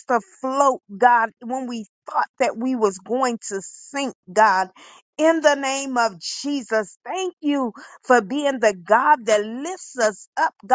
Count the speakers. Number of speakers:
1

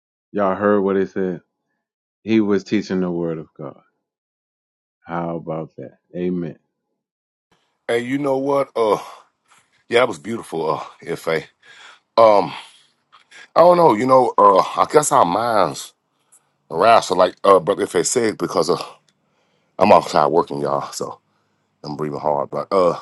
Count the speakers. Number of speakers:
2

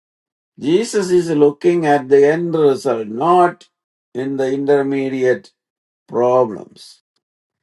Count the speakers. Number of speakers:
1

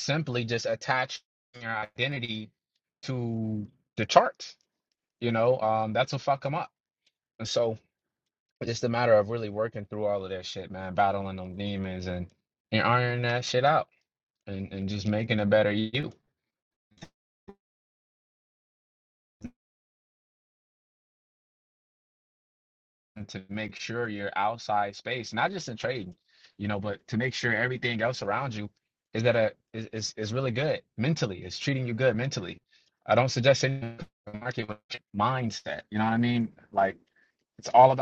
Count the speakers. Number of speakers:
1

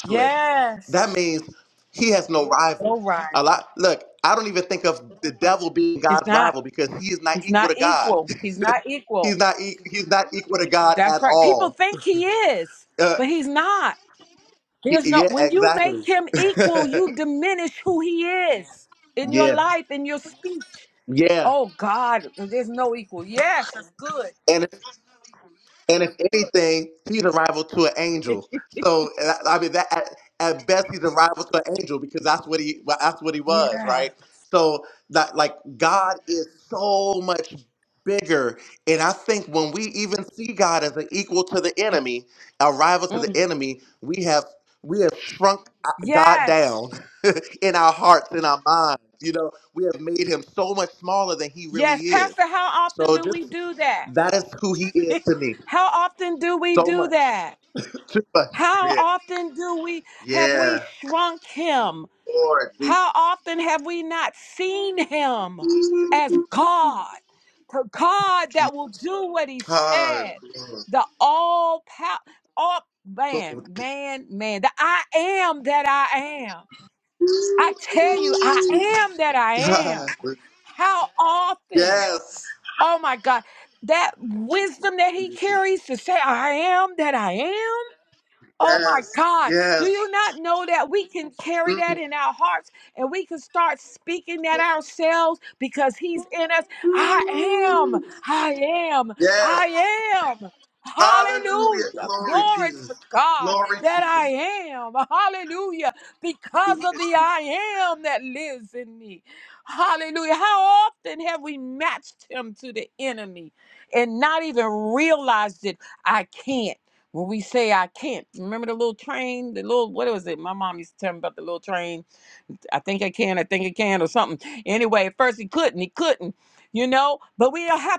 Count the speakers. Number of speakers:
2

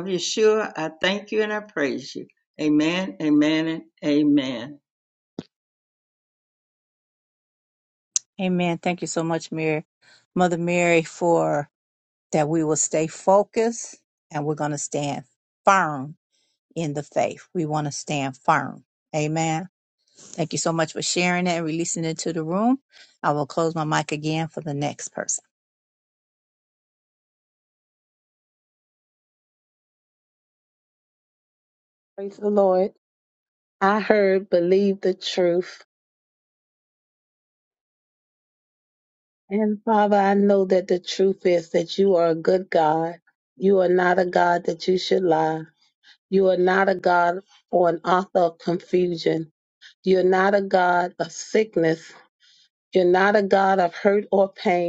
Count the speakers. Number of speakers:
3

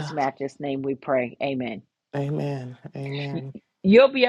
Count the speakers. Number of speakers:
2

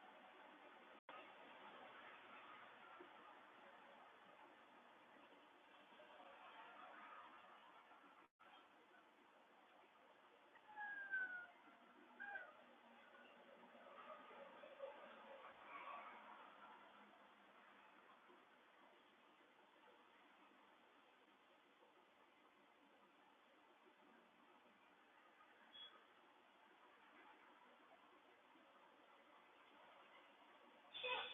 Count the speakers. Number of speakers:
0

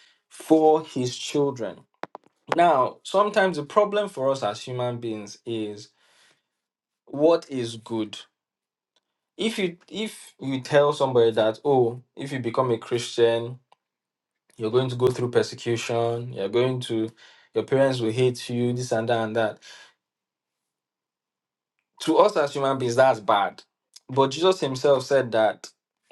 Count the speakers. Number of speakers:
1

